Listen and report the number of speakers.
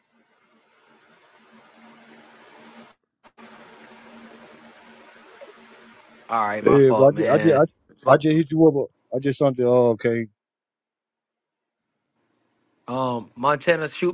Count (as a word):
two